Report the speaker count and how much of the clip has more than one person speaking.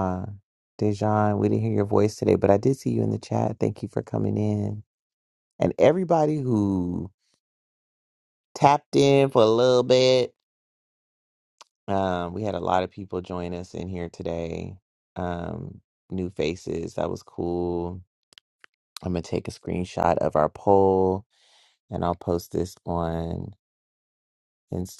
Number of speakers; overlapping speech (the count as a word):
one, no overlap